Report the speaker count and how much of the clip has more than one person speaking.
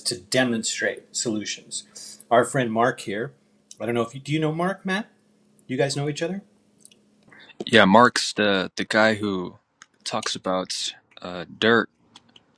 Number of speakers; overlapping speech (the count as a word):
two, no overlap